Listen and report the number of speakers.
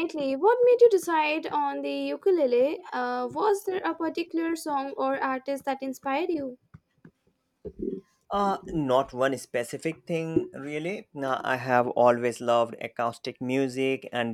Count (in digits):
2